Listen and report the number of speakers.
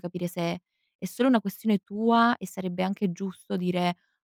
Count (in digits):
1